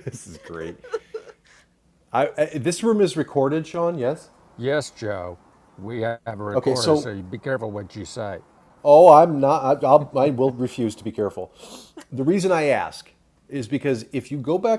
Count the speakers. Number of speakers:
2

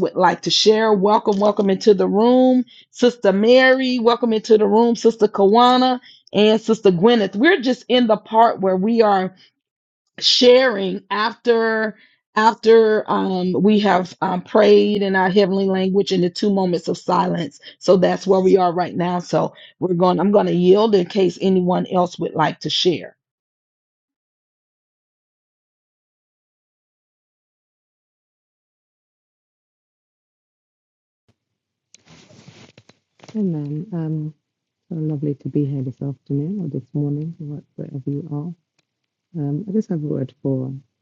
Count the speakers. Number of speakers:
2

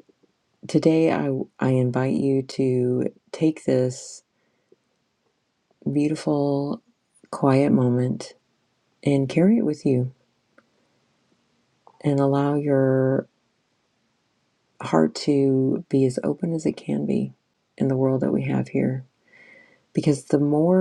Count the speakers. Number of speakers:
1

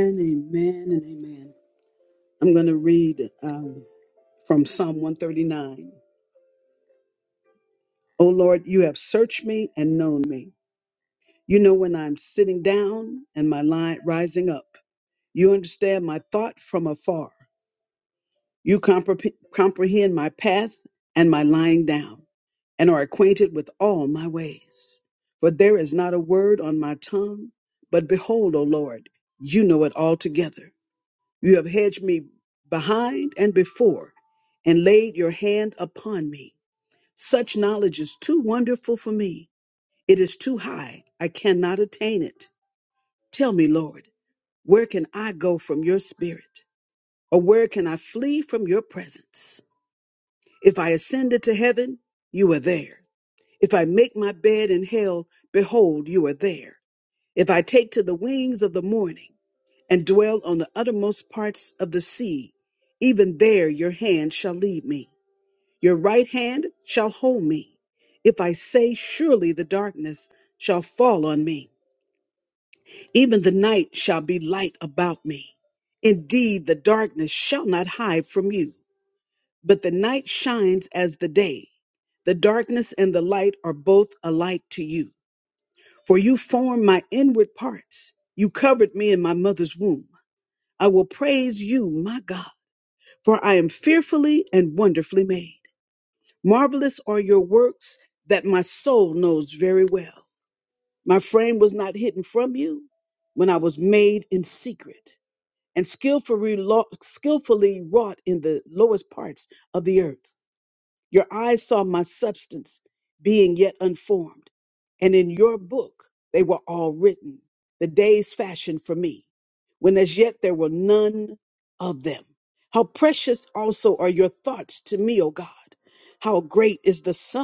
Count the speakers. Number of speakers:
1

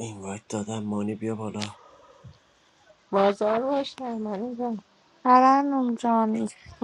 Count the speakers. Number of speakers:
3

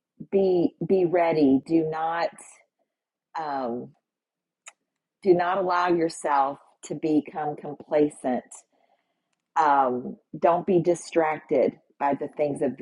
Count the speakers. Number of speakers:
1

